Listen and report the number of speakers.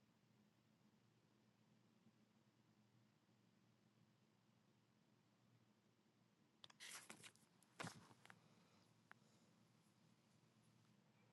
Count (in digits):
0